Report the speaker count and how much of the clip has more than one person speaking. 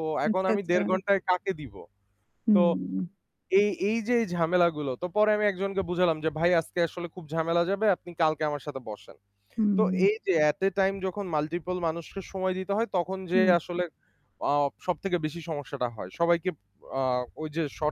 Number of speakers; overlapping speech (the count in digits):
2, about 7%